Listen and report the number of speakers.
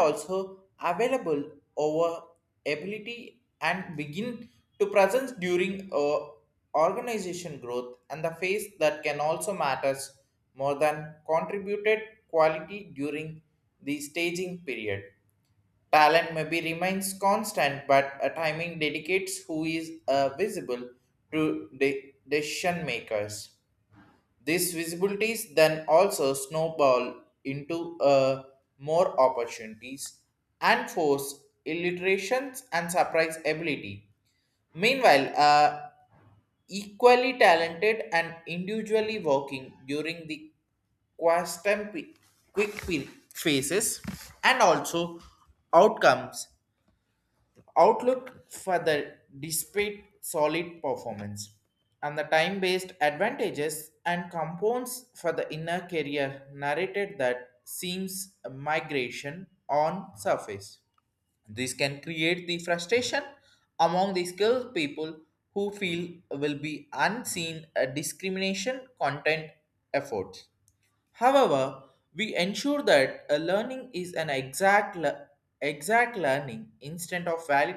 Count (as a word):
one